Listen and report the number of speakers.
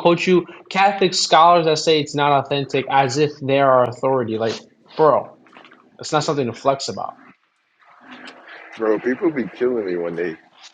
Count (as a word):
two